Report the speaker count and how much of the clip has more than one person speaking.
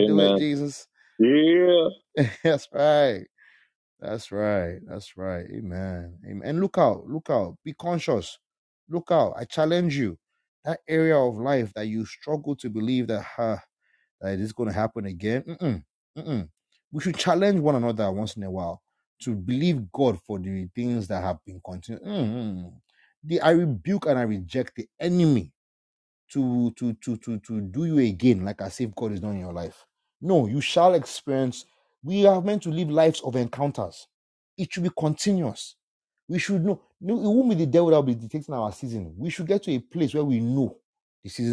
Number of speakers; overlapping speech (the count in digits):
2, about 1%